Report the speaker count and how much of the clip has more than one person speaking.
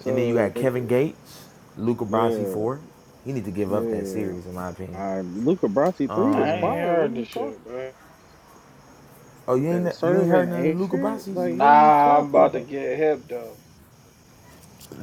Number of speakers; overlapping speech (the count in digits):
3, about 43%